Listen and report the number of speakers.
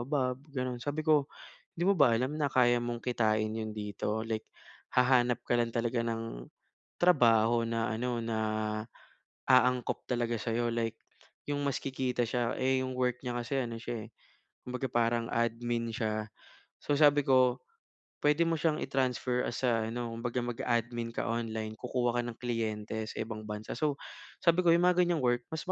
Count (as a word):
one